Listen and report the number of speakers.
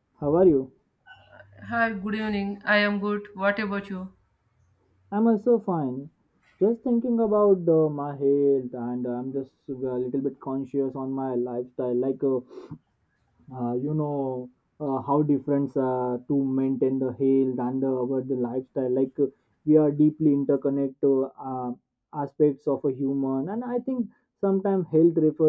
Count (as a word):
two